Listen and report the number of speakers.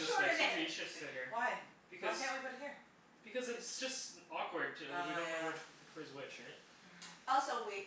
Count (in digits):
3